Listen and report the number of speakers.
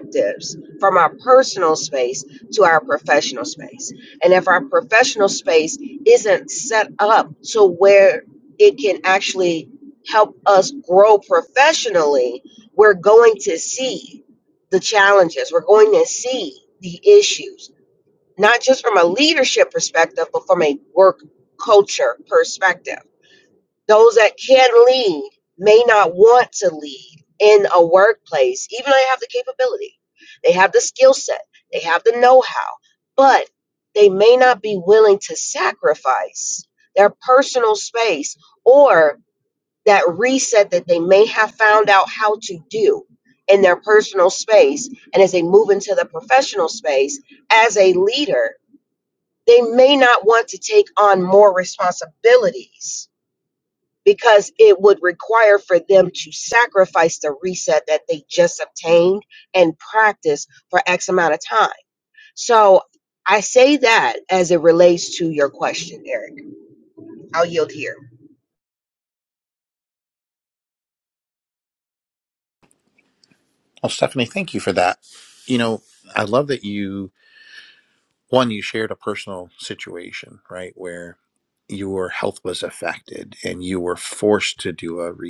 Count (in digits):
2